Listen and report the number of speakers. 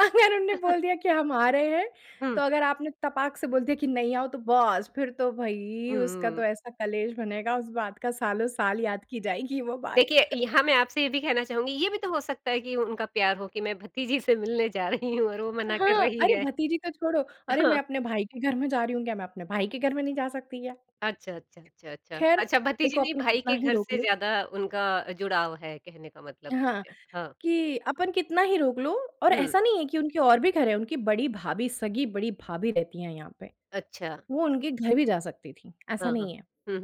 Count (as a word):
two